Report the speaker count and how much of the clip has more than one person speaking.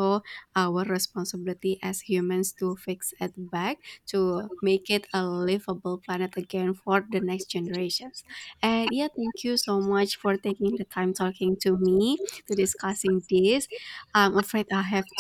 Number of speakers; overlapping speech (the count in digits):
1, no overlap